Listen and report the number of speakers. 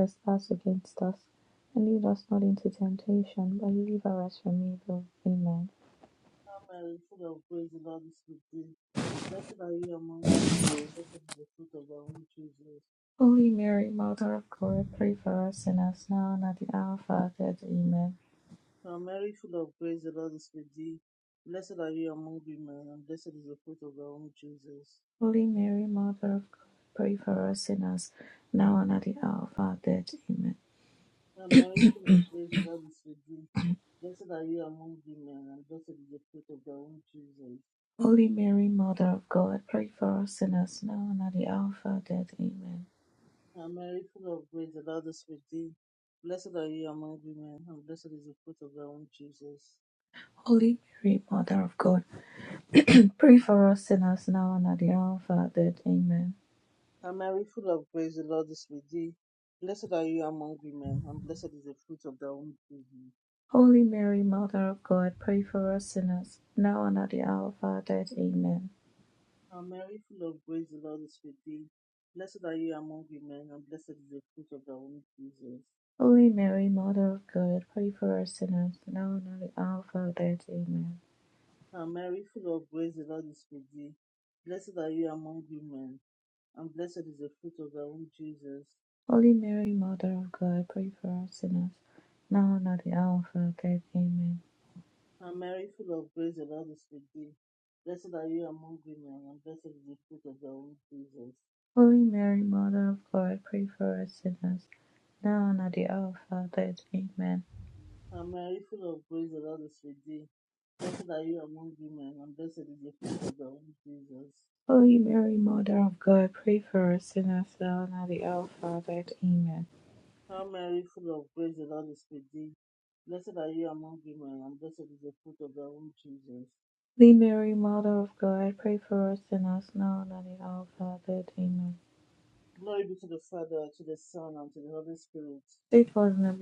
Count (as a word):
two